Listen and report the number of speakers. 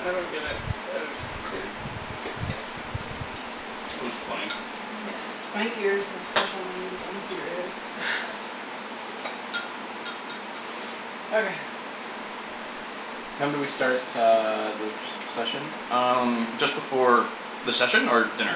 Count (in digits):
4